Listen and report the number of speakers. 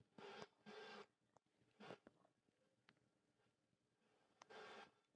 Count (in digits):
0